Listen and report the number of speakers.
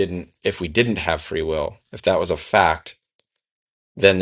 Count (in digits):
1